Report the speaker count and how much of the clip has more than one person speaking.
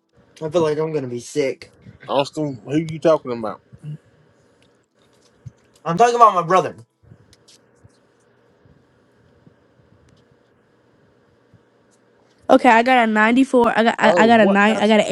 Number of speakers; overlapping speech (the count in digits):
3, about 5%